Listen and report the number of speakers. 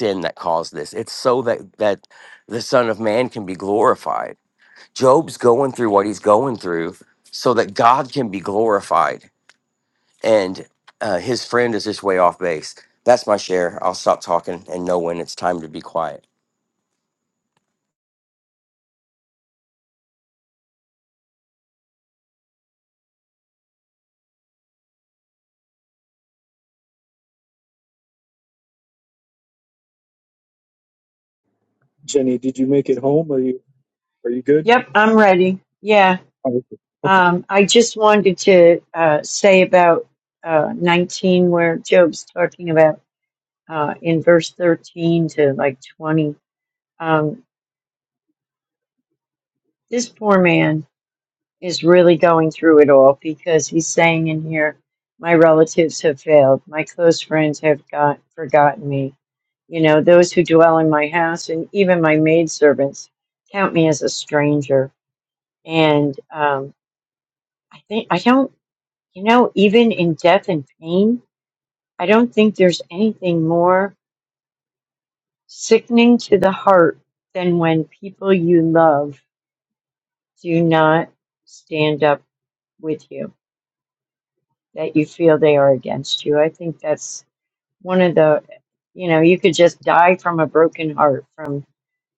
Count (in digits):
3